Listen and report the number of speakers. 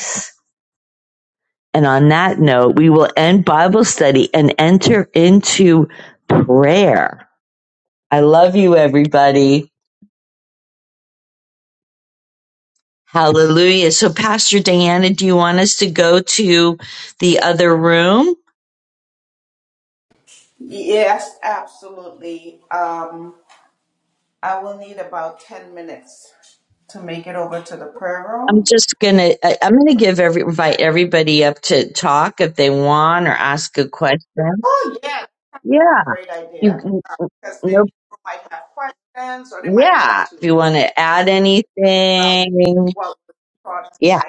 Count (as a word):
two